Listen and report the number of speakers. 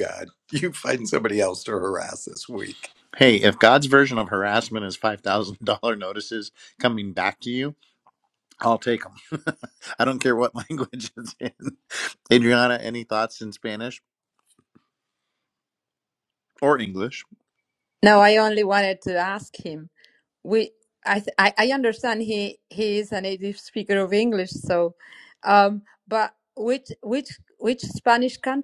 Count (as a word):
three